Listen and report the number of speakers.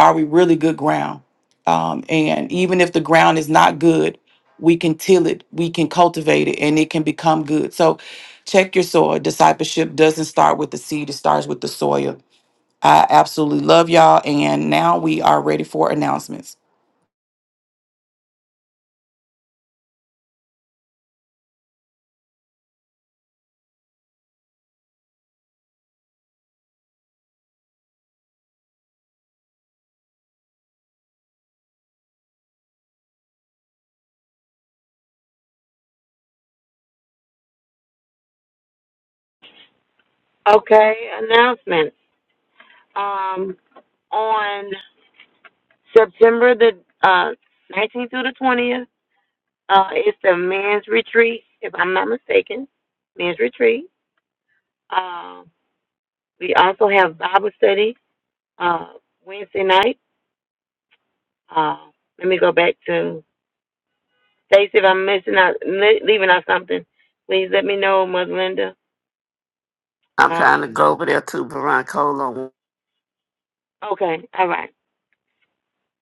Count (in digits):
3